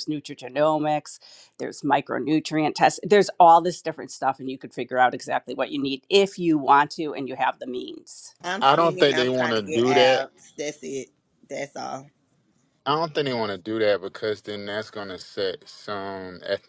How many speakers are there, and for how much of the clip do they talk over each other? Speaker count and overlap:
3, about 10%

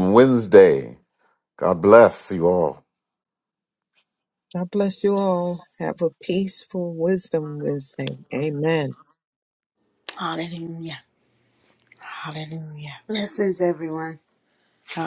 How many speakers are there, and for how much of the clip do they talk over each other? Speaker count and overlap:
4, no overlap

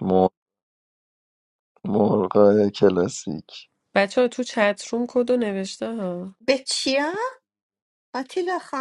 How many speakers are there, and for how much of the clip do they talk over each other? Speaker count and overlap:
3, no overlap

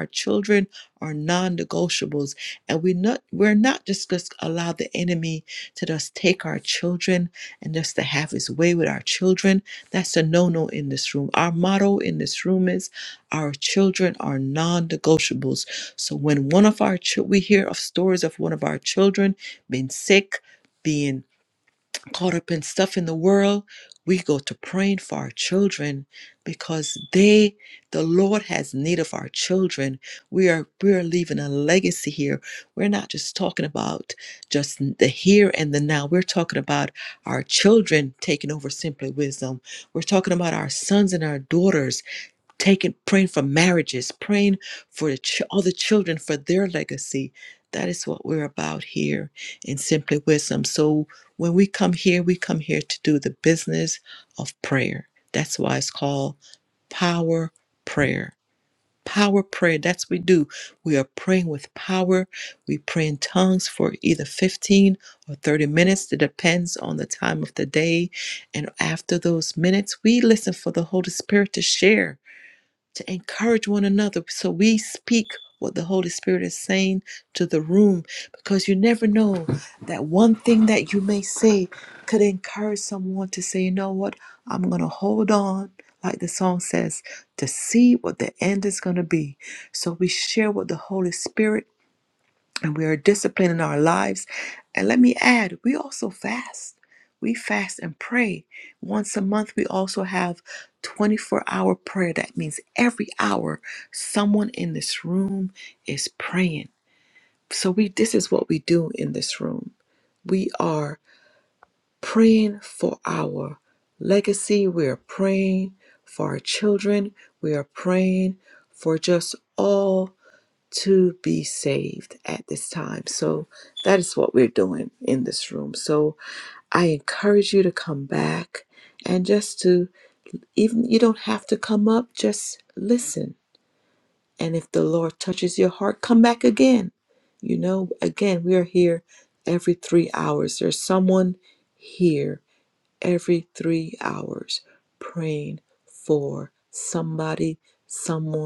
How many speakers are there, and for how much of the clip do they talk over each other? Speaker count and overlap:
1, no overlap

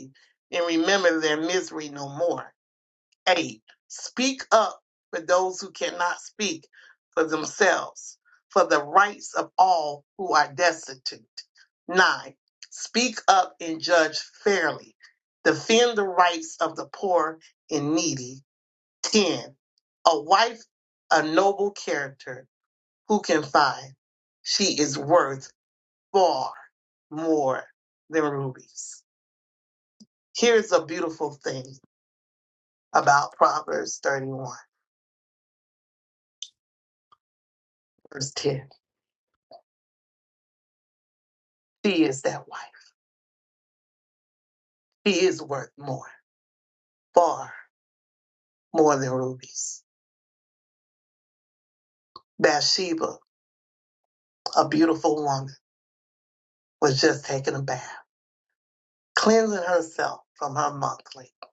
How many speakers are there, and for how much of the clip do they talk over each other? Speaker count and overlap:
1, no overlap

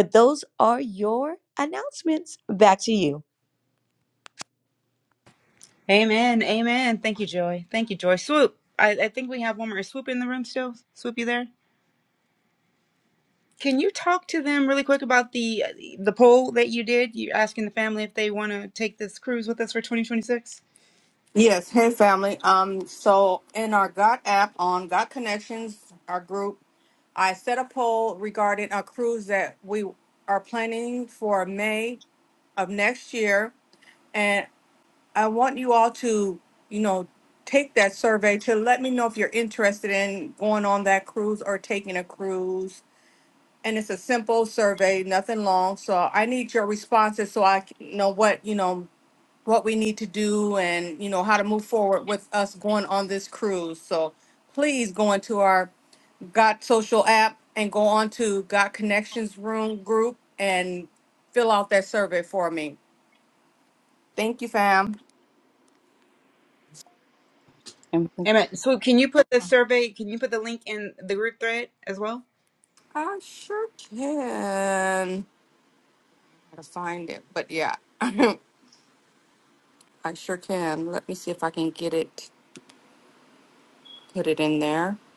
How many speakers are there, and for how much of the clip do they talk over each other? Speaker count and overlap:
3, no overlap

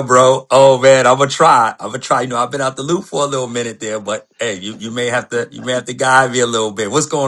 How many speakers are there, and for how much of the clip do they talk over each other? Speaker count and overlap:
1, no overlap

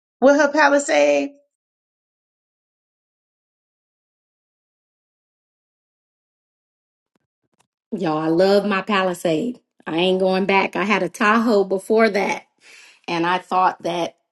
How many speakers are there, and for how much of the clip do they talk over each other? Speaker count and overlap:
2, no overlap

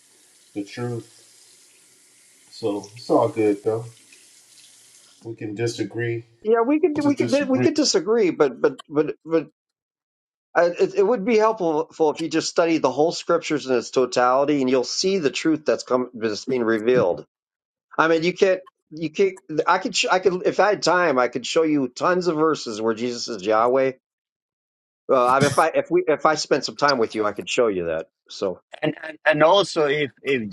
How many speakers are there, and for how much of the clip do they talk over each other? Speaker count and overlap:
3, about 2%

